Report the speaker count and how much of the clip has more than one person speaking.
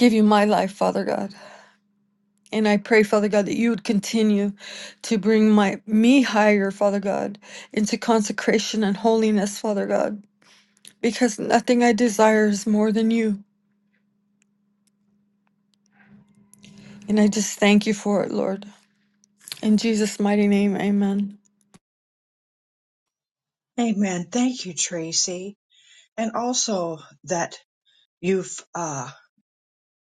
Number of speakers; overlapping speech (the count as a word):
two, no overlap